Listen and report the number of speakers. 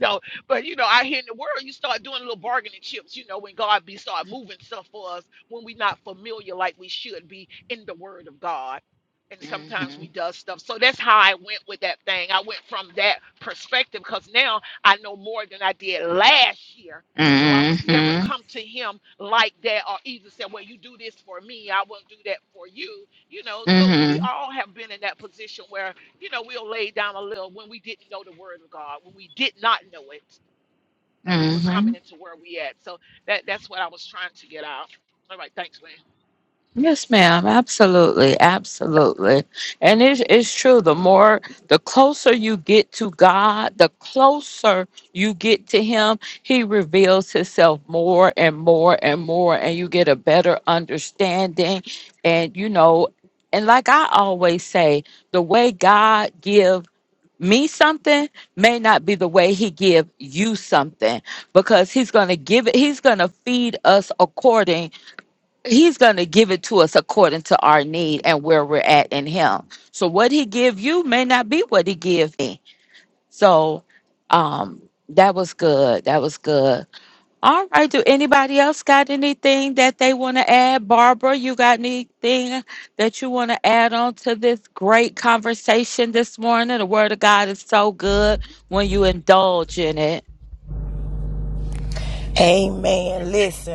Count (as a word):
three